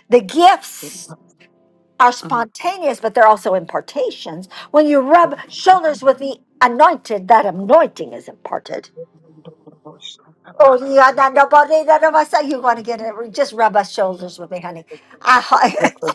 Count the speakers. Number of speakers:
1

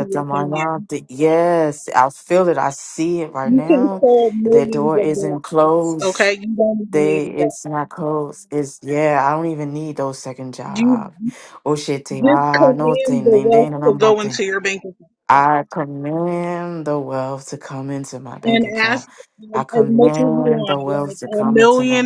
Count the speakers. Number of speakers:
2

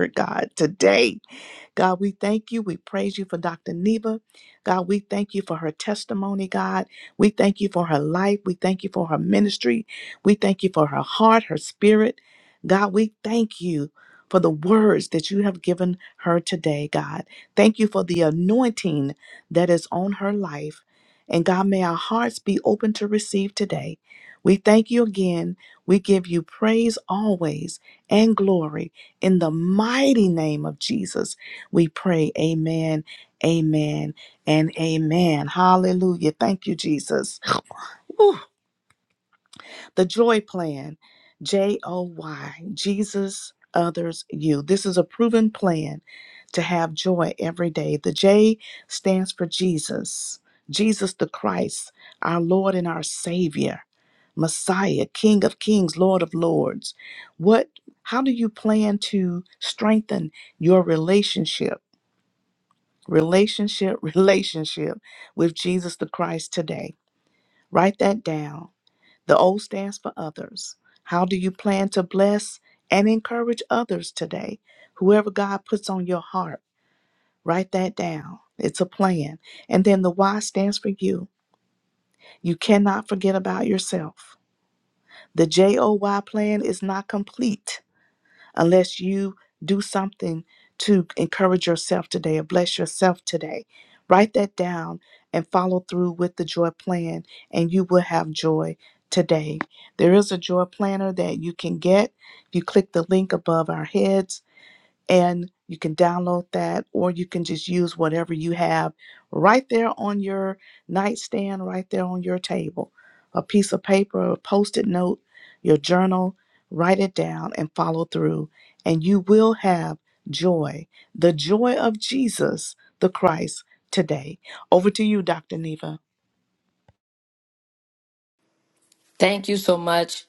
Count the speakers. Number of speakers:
2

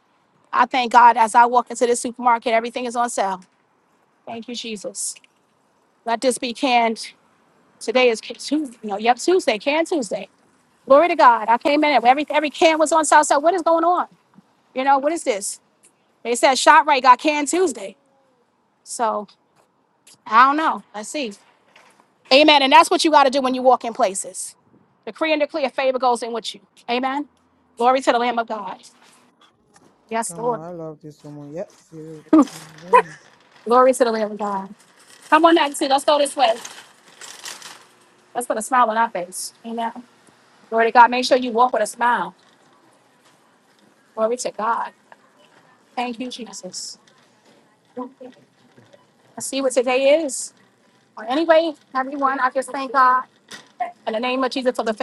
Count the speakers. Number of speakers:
2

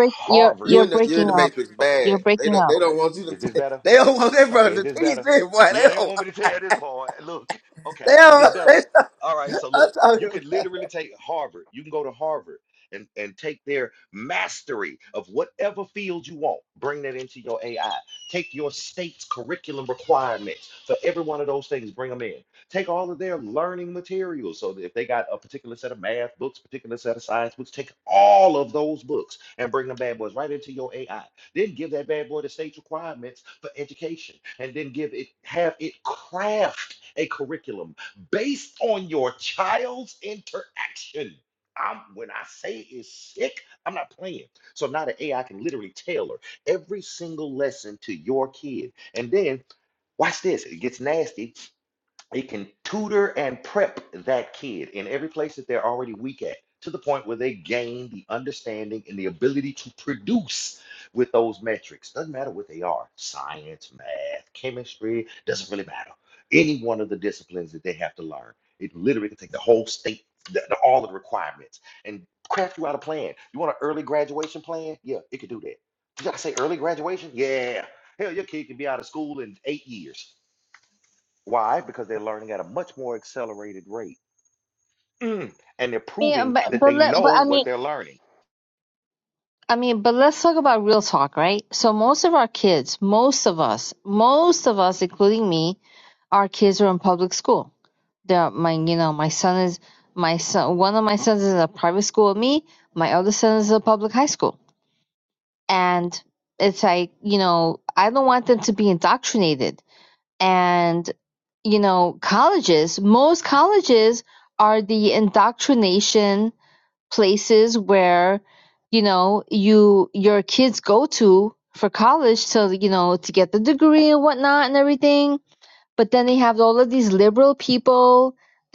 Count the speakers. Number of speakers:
3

